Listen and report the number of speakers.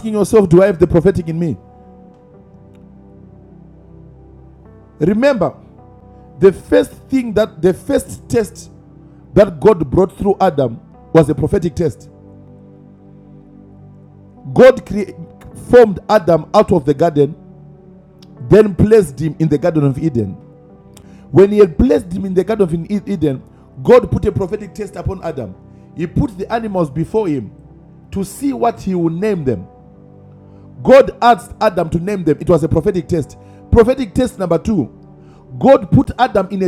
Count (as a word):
one